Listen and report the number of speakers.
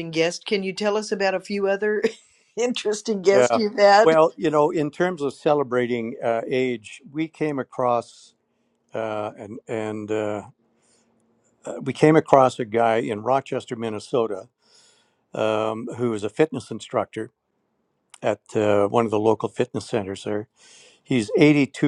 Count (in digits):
2